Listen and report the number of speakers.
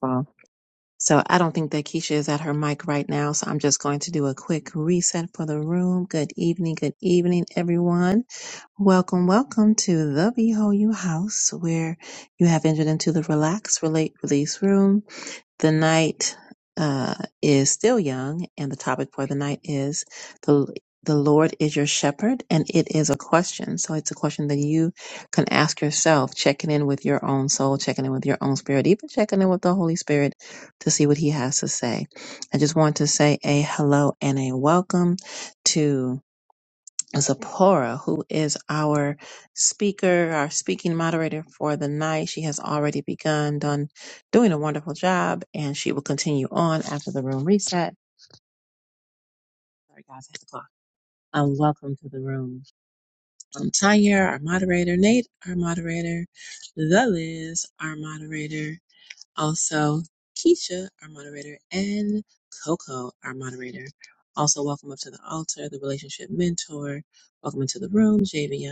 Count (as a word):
one